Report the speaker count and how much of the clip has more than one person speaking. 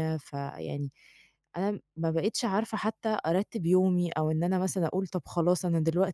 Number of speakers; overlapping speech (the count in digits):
1, no overlap